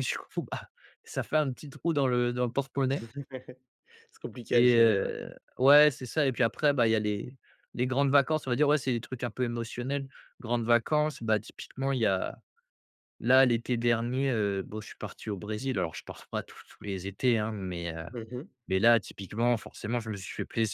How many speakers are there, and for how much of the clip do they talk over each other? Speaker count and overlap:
2, about 3%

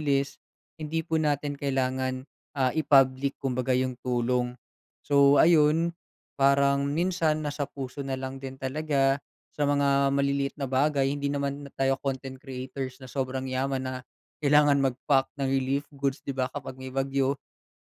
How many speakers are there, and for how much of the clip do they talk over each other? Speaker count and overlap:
1, no overlap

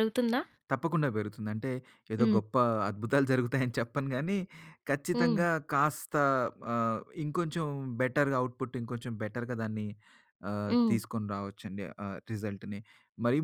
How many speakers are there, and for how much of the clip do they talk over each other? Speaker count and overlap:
2, about 6%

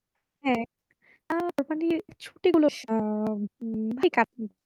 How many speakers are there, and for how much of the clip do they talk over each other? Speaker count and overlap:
1, no overlap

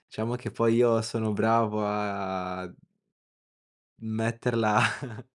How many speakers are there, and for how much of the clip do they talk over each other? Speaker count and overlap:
1, no overlap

